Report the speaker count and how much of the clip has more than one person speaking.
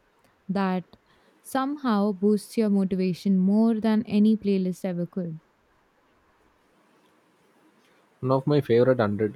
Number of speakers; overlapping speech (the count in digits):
2, no overlap